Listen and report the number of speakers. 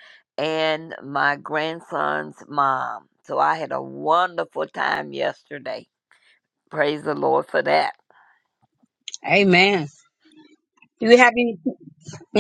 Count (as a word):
two